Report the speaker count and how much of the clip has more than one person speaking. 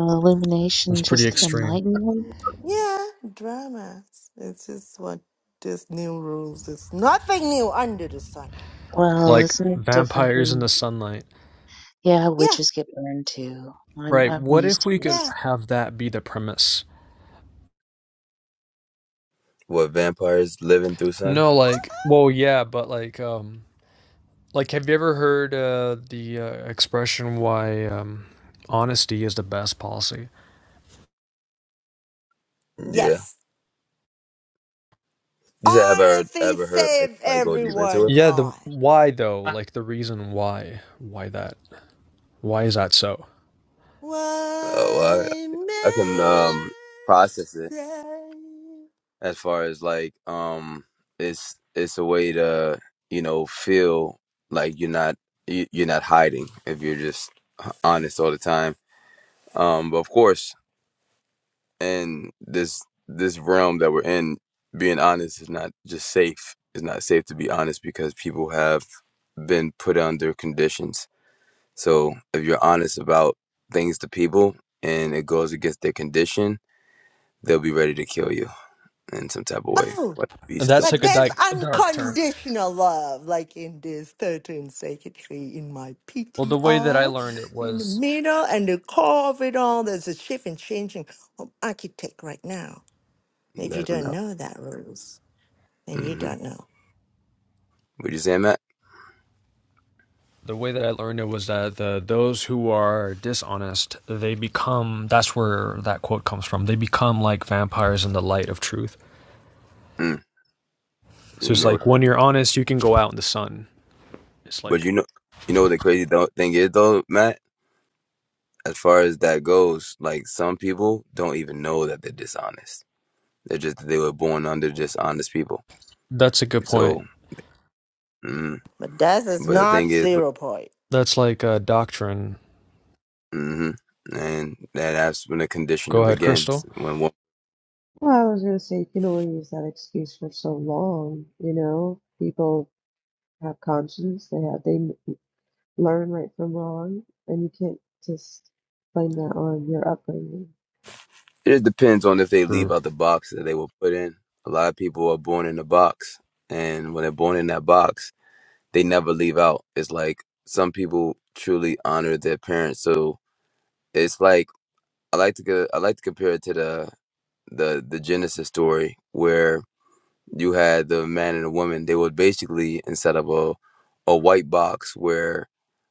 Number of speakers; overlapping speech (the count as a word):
five, about 8%